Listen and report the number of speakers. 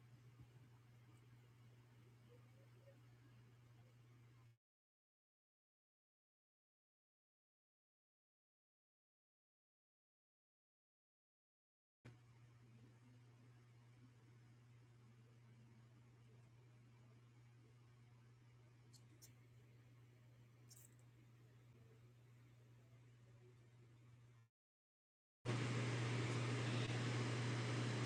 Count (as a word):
zero